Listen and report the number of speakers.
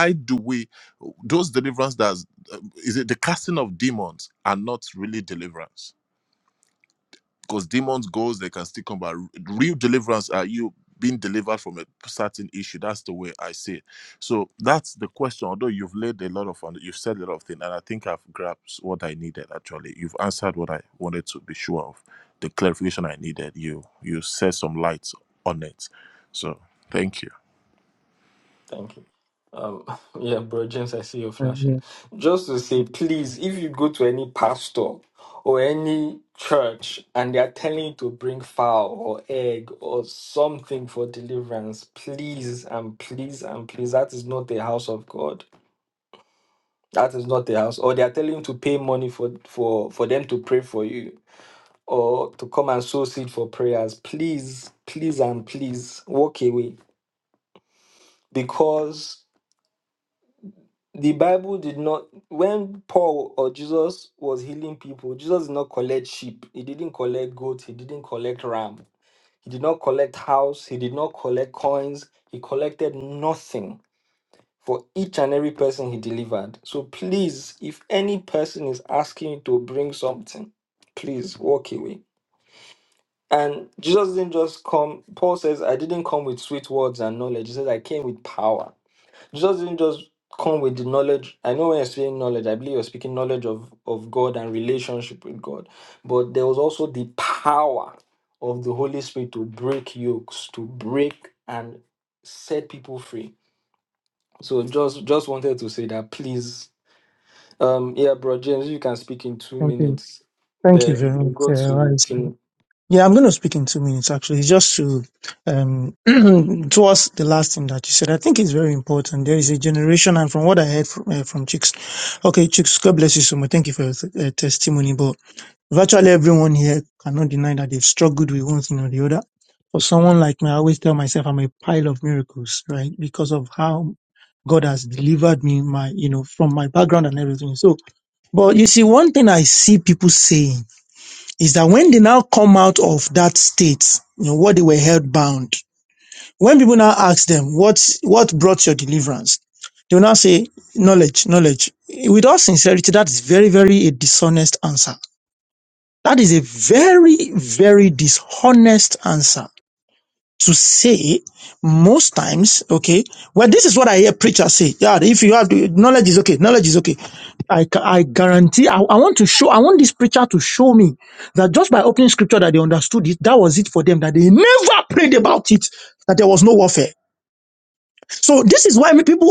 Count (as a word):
three